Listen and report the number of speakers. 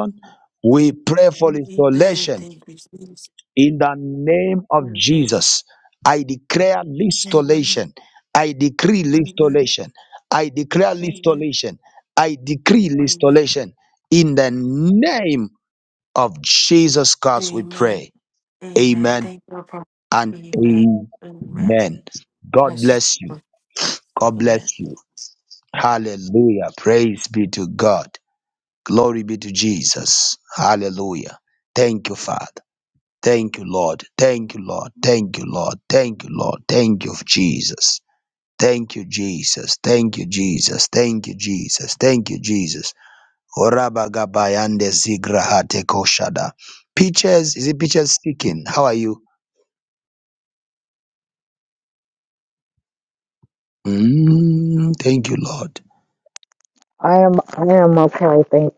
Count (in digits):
3